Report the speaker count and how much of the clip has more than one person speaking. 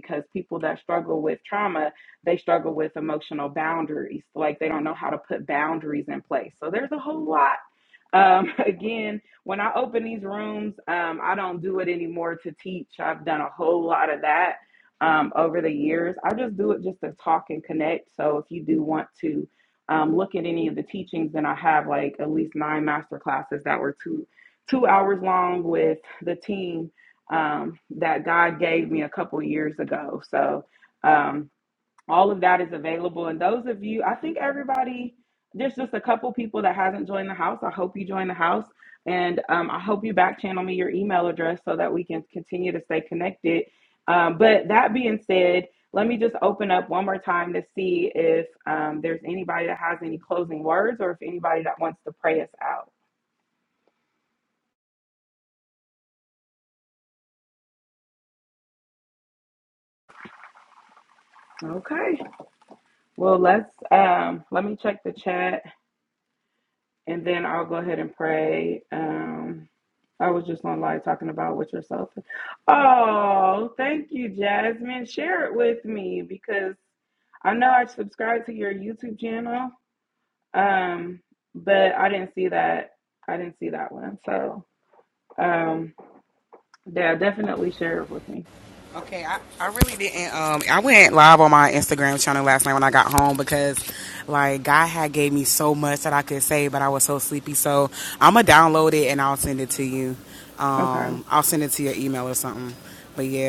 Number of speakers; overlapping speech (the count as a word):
two, under 1%